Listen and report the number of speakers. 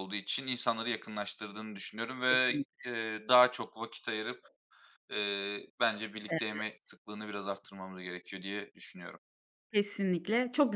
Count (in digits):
2